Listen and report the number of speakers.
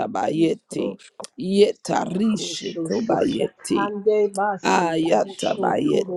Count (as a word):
three